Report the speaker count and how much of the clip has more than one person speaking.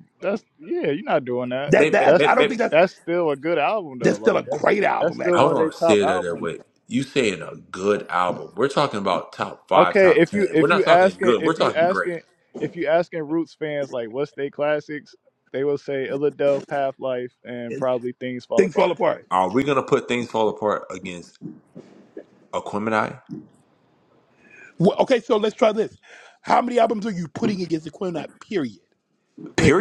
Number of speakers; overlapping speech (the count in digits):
3, about 20%